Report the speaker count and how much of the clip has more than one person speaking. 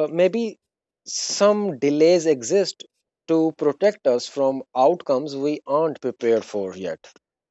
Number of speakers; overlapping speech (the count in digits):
1, no overlap